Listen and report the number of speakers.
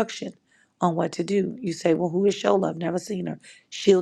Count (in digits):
1